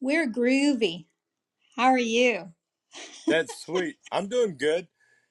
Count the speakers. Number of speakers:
2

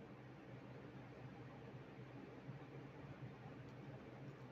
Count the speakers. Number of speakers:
0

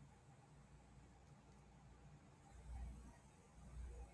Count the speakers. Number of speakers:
0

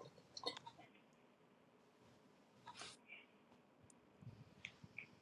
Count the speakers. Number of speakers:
0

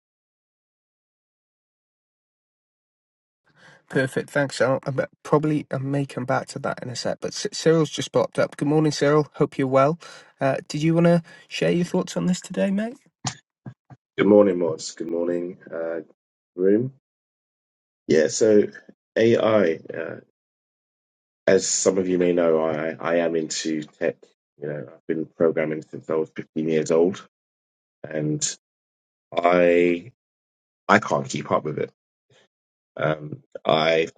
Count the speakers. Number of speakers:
2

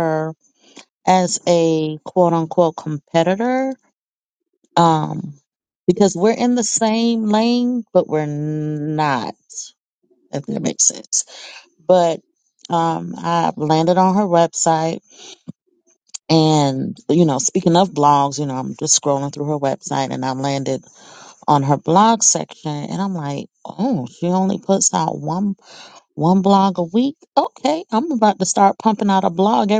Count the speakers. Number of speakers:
1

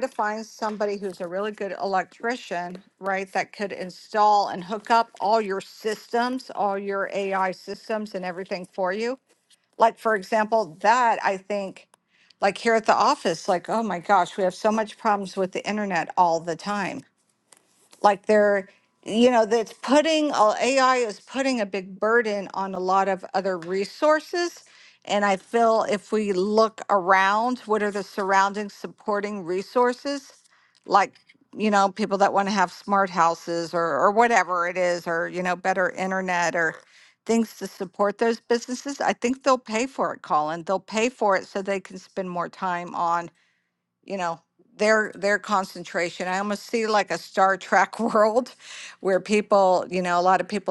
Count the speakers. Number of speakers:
1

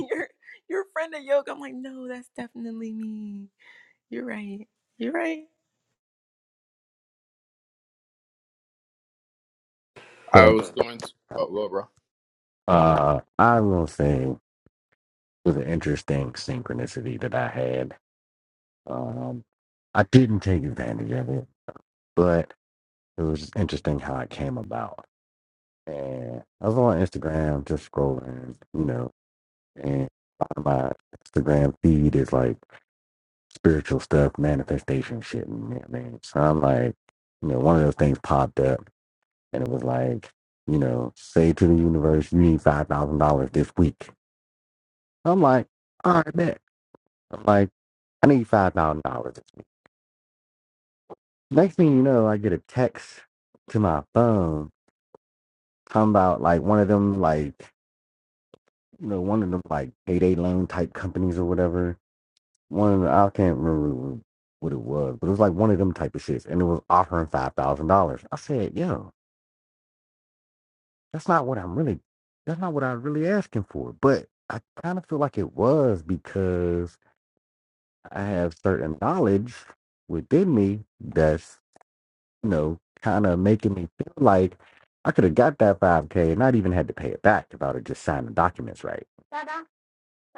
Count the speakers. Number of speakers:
3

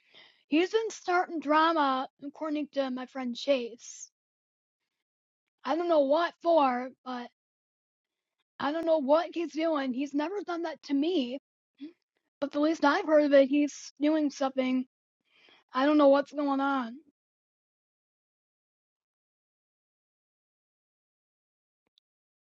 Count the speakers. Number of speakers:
1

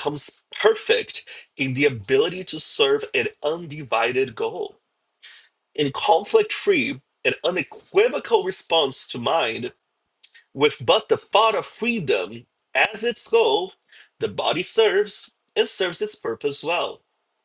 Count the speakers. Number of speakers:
1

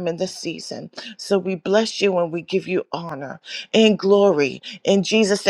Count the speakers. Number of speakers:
1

